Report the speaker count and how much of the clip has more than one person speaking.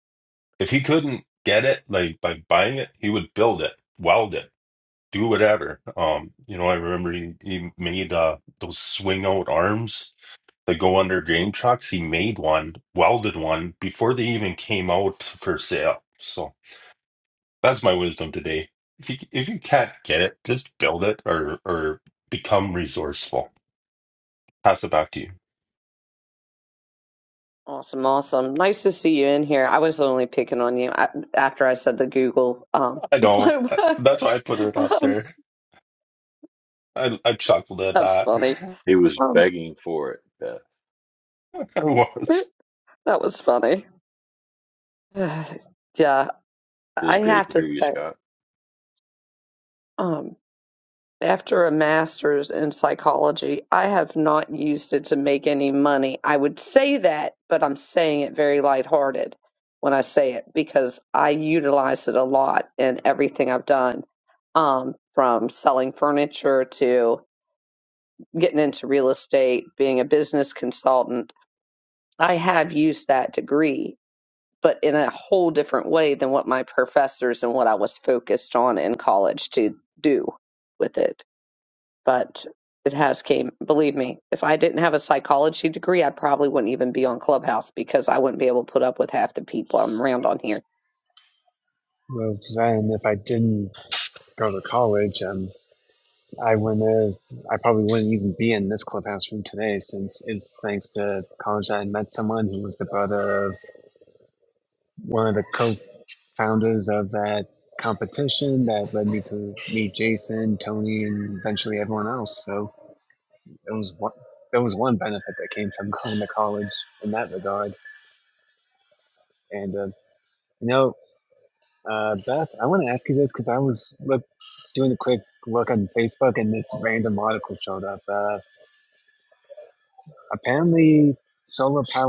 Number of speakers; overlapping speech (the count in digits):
4, about 2%